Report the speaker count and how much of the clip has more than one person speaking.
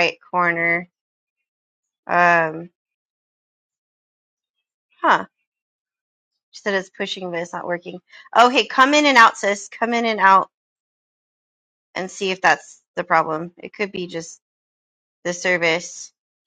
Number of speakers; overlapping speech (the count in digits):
1, no overlap